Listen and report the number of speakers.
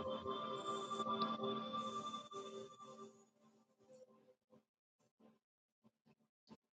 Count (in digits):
0